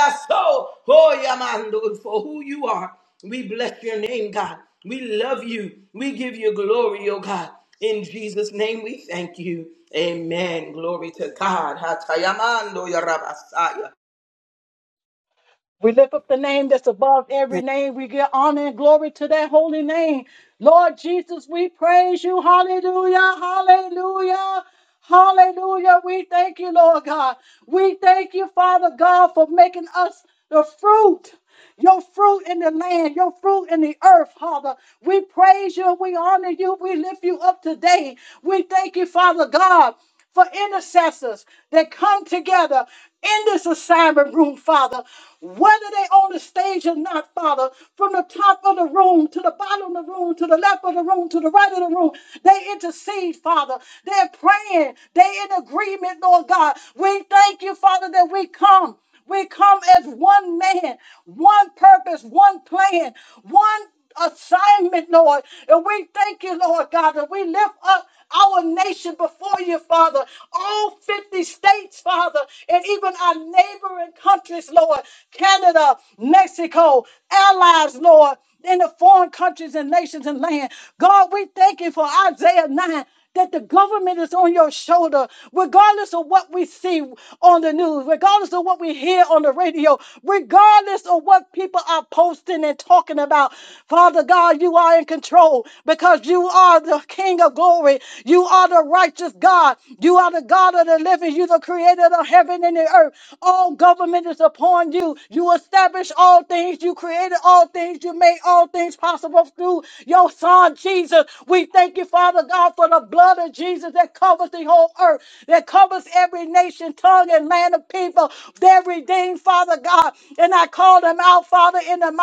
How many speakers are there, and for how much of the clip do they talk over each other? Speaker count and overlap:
2, no overlap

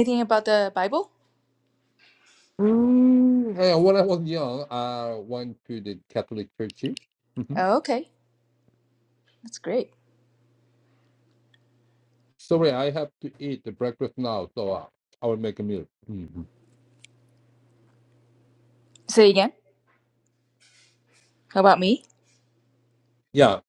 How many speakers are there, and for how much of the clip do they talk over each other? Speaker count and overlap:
2, about 1%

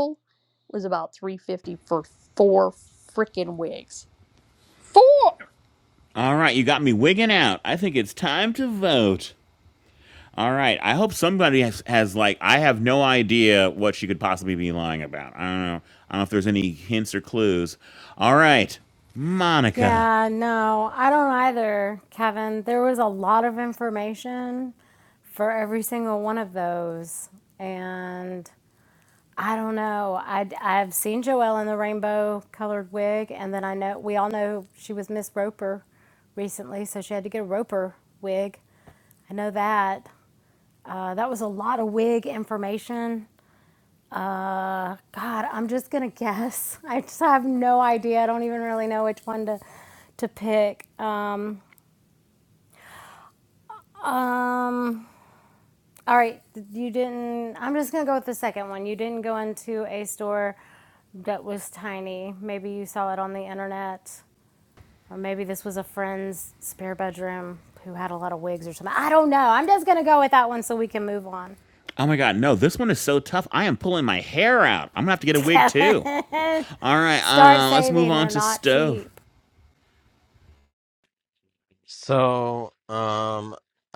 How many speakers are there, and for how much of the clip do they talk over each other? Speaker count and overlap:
4, about 3%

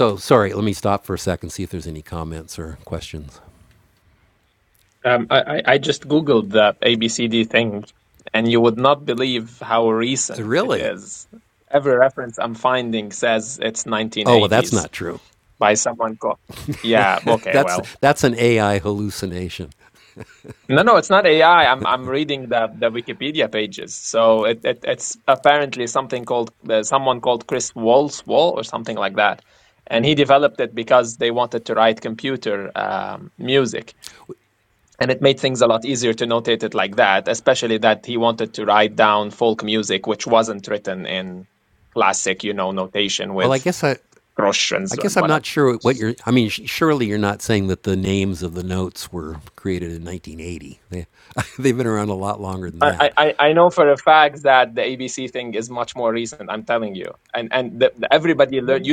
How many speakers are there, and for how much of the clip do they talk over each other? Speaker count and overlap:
2, about 4%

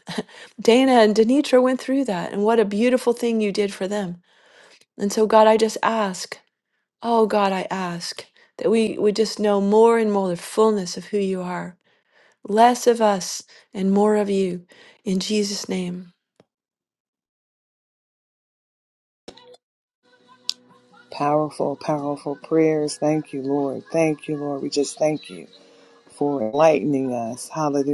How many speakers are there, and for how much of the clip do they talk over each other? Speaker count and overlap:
2, no overlap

